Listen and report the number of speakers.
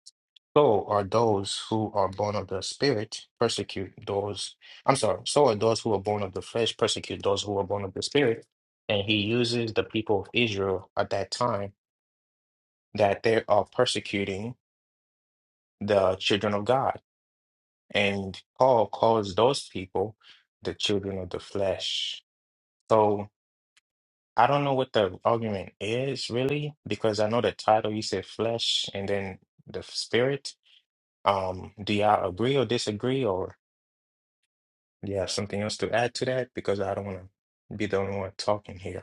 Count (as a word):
one